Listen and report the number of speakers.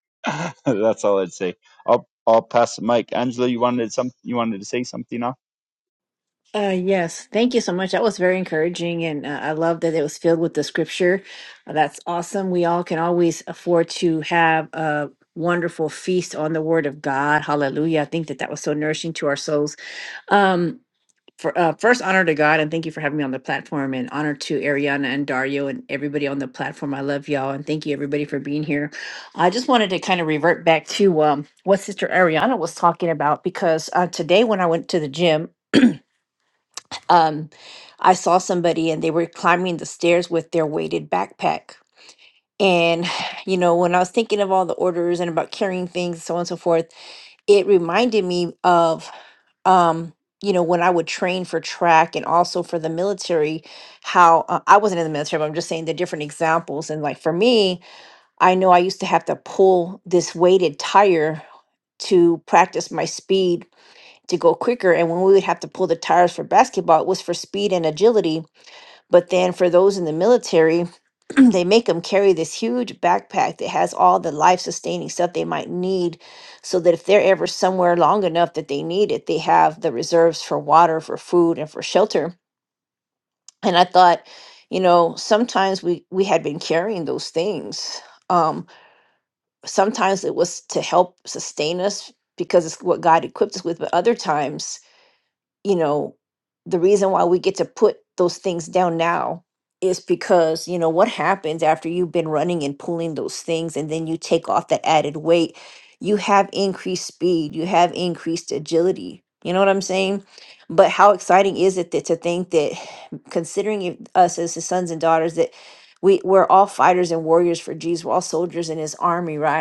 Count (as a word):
two